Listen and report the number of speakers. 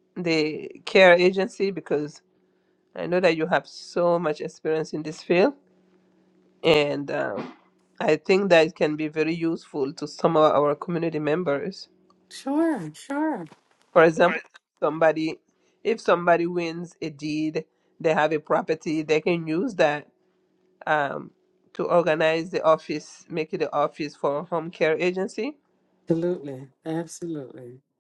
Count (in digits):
2